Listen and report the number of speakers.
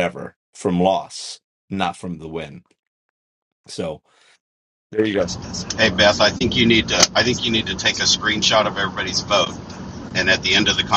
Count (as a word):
two